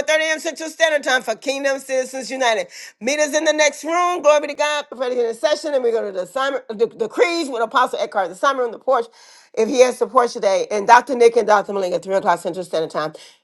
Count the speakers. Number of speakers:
one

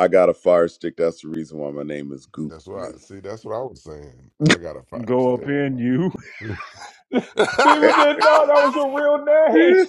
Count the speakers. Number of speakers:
three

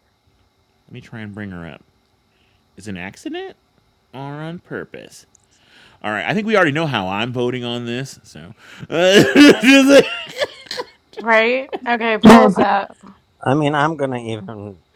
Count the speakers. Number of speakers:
three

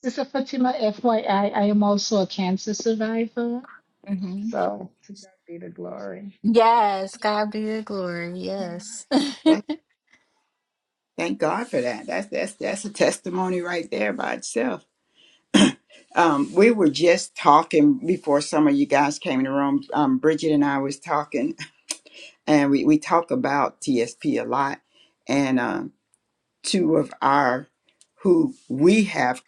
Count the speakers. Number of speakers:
three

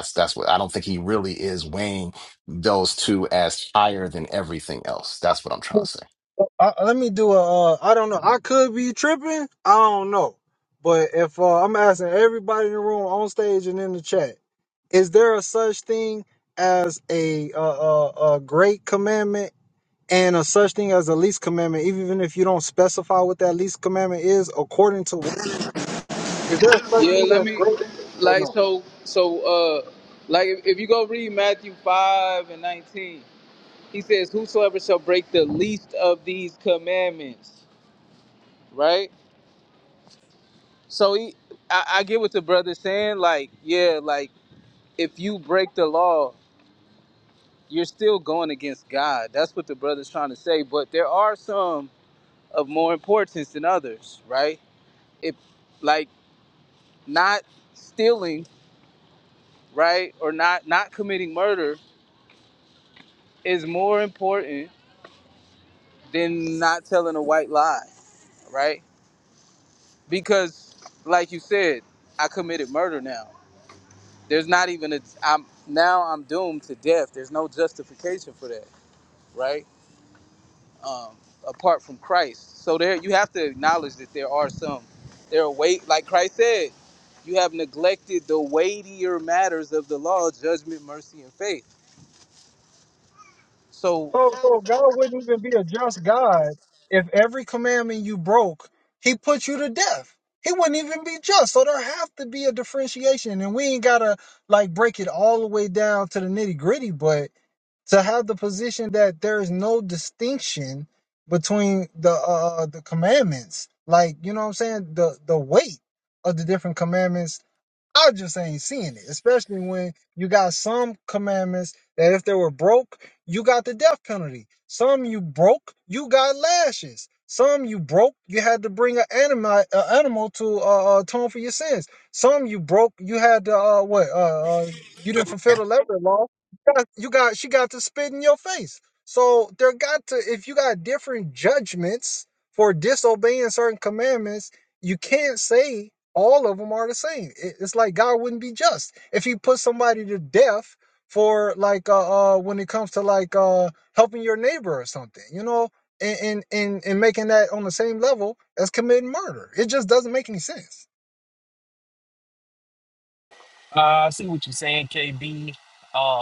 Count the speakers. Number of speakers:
four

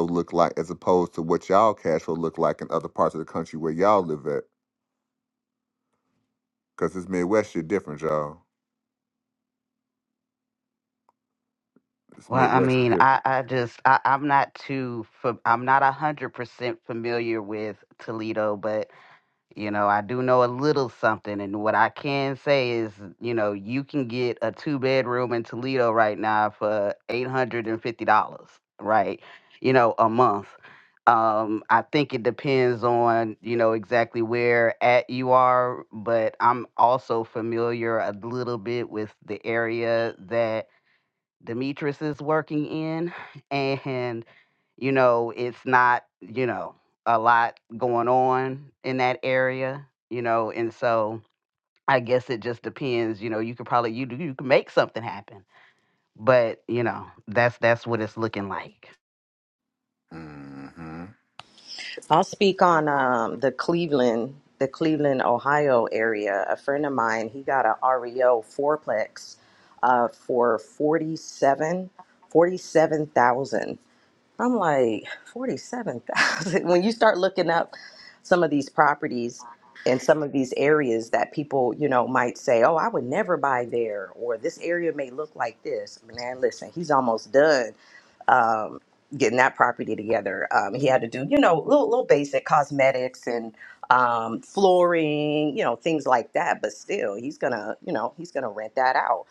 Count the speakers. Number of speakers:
three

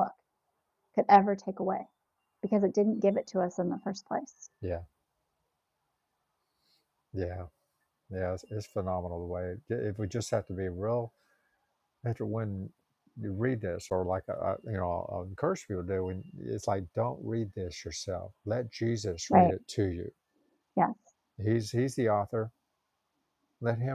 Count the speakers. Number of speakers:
two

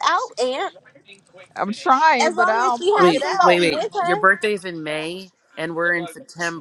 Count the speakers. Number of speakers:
three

